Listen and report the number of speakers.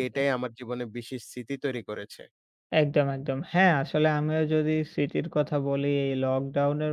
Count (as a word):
two